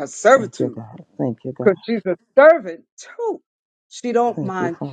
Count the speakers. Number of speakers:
two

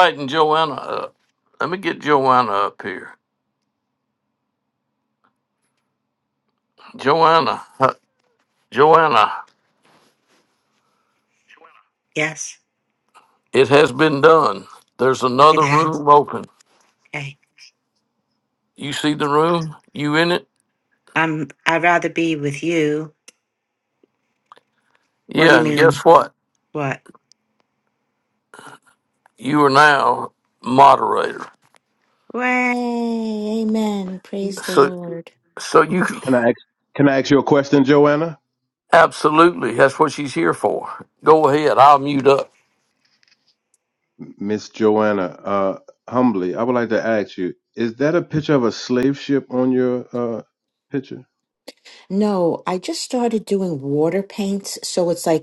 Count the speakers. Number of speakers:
three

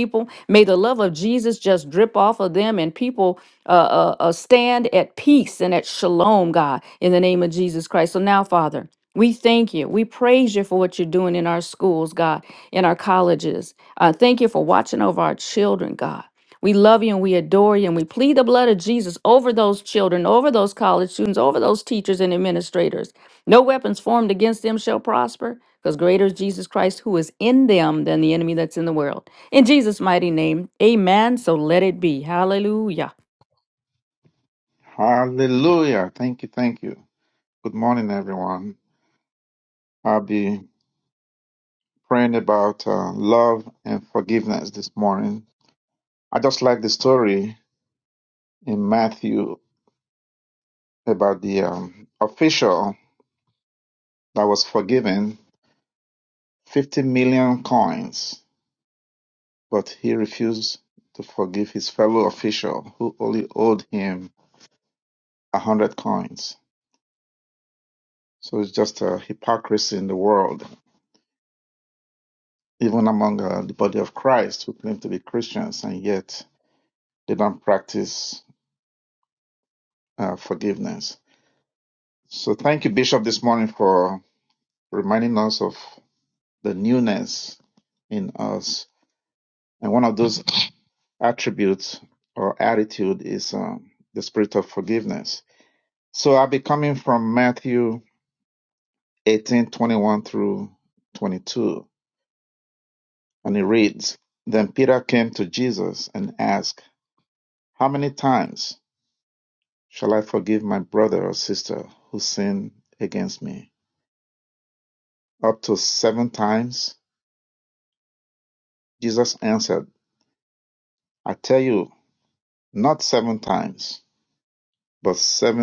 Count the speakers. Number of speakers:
two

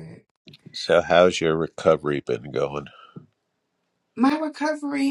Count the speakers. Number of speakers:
two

